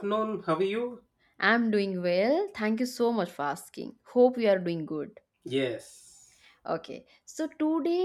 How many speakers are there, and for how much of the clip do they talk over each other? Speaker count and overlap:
2, no overlap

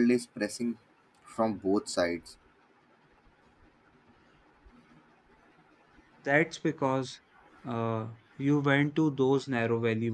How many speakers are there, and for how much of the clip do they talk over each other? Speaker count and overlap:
2, no overlap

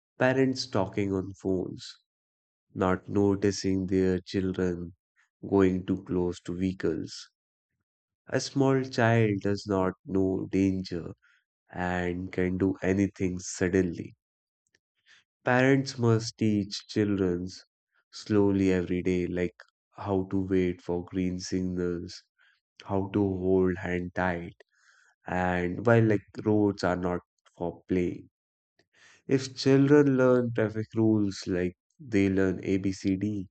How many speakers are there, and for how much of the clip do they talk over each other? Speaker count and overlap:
1, no overlap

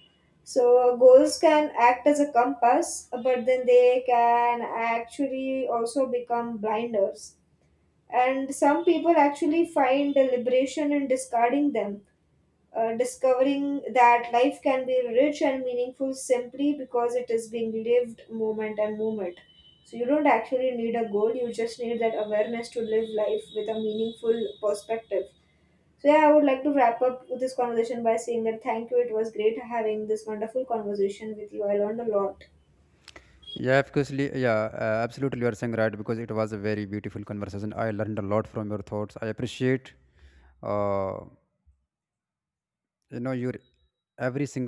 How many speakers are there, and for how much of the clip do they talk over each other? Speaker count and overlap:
2, no overlap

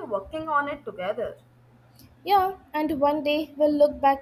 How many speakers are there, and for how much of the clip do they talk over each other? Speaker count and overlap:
2, no overlap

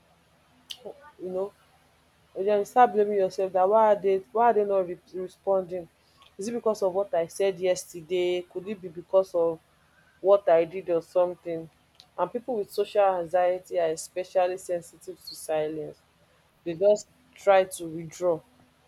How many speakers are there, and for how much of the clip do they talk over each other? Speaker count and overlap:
1, no overlap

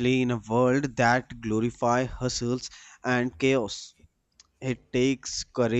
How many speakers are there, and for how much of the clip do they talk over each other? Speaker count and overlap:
1, no overlap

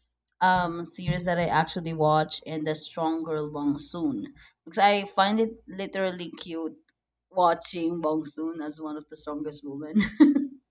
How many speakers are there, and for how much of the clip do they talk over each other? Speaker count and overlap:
1, no overlap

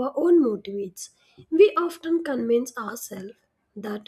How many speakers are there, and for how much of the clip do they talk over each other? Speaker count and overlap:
1, no overlap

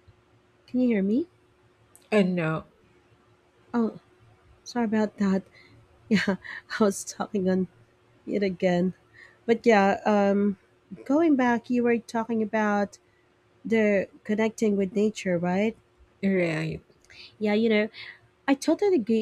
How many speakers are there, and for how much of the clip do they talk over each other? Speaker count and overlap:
2, no overlap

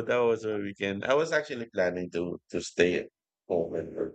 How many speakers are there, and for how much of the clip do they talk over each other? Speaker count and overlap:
1, no overlap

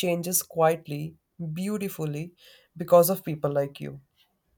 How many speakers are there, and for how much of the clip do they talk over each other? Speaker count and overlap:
1, no overlap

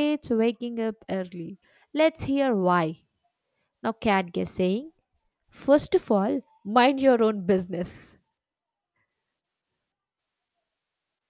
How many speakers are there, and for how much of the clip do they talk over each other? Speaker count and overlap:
1, no overlap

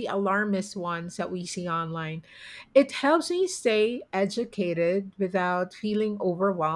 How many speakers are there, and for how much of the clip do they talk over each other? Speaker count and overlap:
1, no overlap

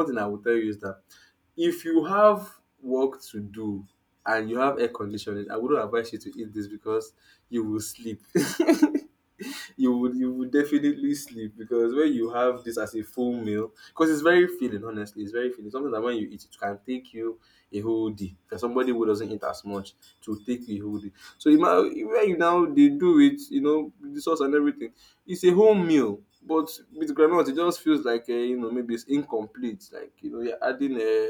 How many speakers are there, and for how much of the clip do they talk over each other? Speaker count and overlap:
1, no overlap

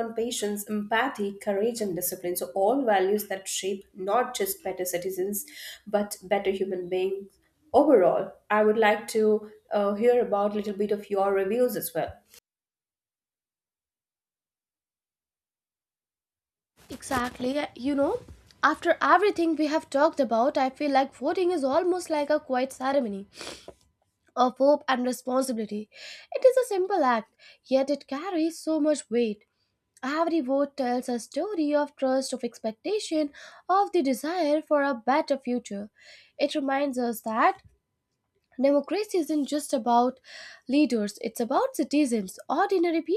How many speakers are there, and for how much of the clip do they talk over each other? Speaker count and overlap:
2, no overlap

